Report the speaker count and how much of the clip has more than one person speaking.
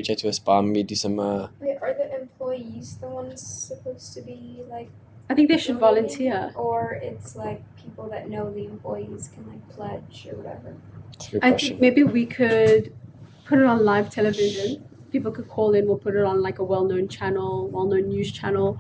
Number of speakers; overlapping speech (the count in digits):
3, about 7%